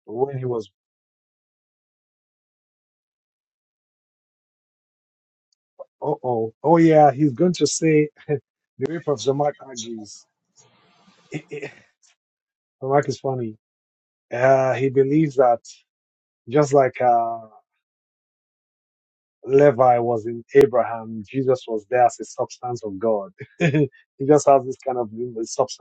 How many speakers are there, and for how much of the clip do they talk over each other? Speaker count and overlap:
1, no overlap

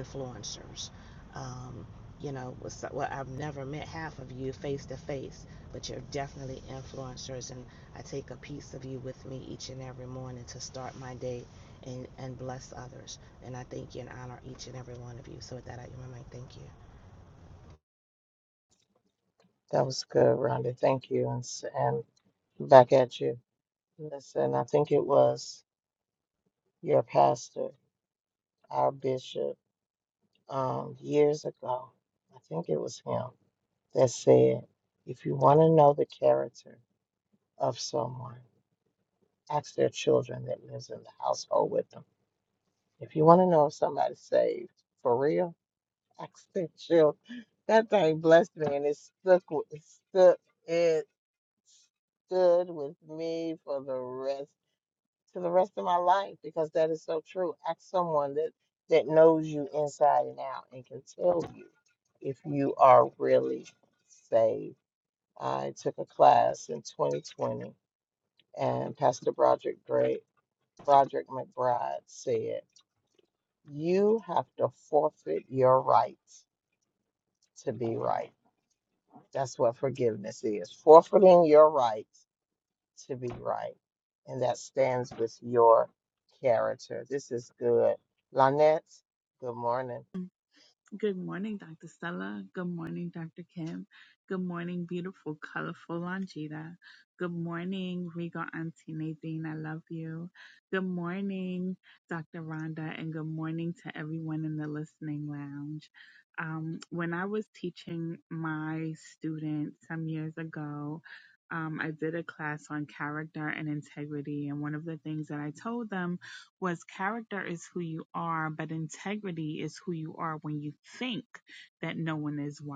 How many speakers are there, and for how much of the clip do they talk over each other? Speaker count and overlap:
3, no overlap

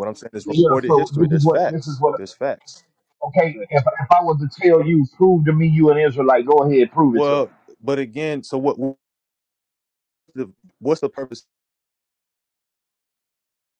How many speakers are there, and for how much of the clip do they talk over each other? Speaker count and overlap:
2, about 11%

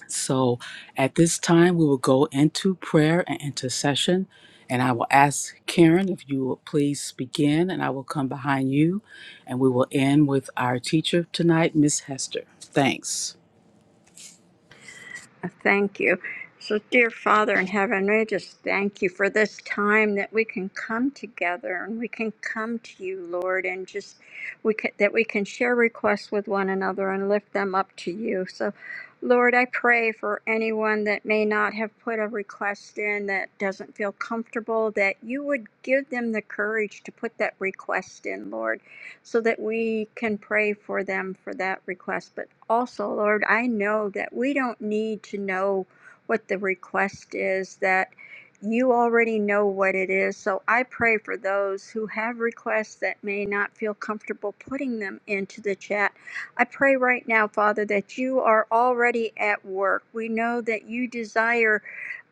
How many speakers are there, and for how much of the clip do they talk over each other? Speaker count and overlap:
2, no overlap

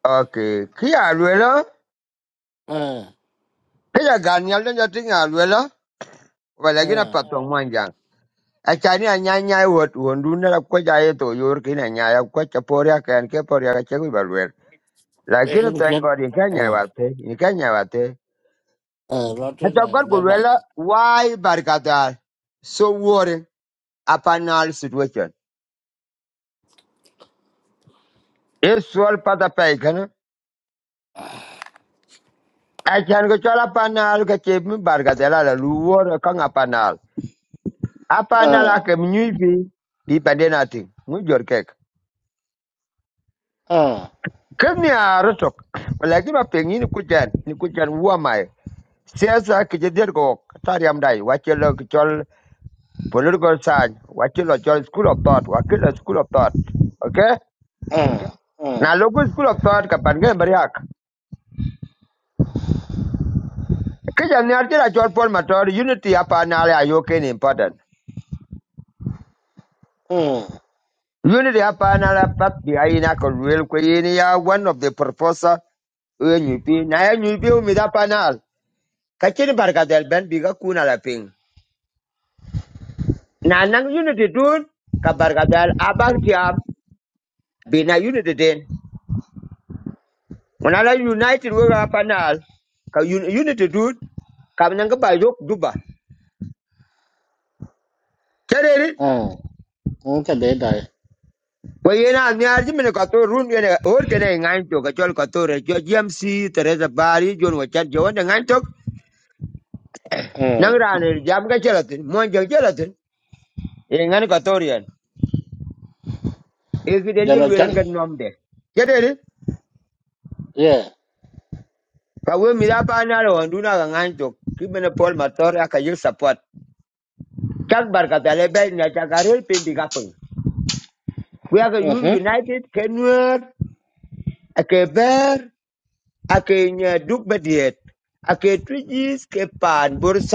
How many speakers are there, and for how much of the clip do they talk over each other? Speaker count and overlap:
2, about 3%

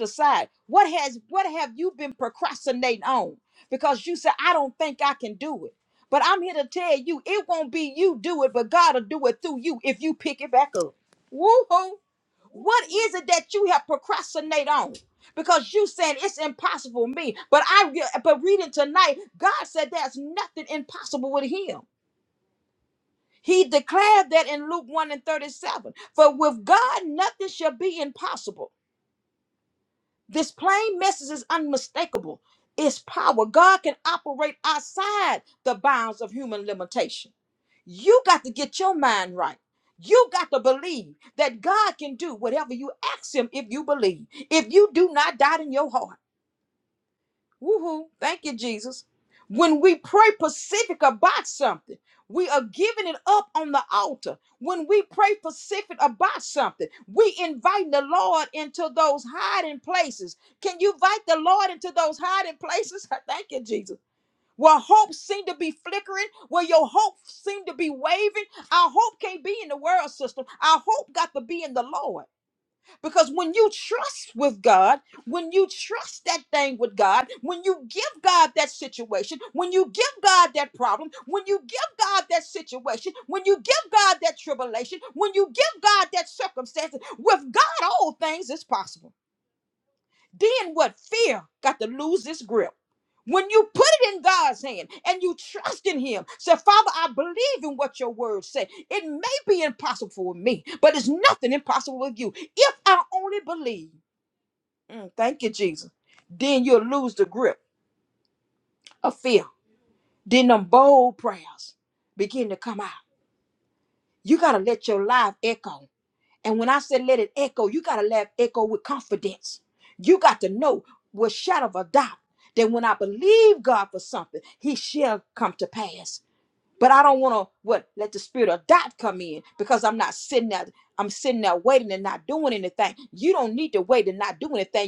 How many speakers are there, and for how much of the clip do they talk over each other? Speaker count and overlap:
1, no overlap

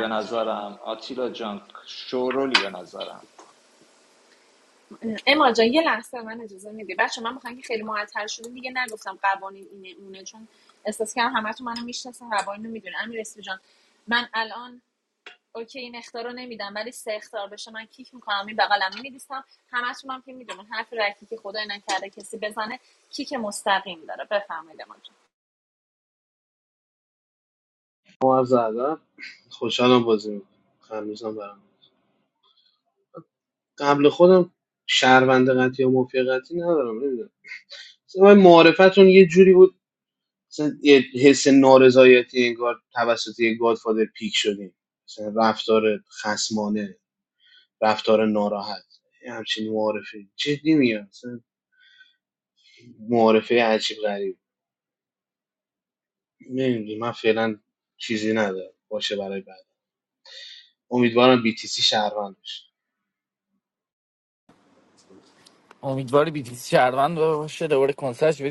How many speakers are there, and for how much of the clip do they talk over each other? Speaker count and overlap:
4, under 1%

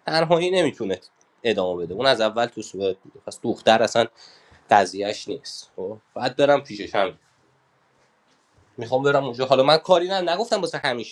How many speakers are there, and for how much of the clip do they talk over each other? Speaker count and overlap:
1, no overlap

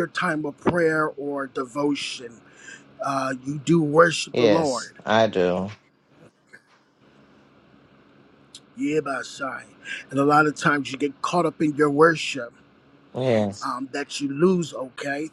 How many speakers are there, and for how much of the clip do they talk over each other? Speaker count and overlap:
2, about 2%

